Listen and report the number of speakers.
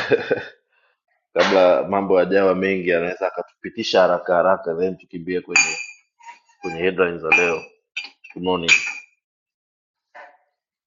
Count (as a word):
one